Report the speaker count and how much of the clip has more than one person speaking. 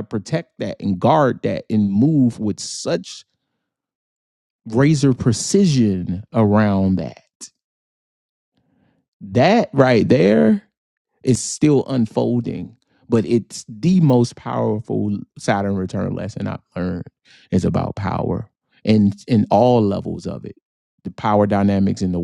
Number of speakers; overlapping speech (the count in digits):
1, no overlap